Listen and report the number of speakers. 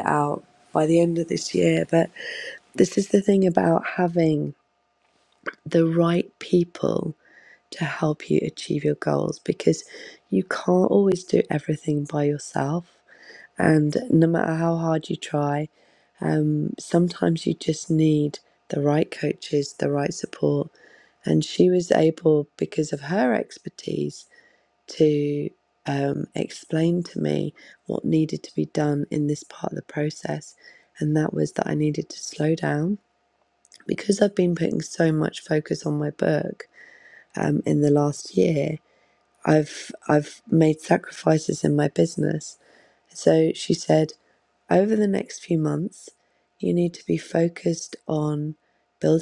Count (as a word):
one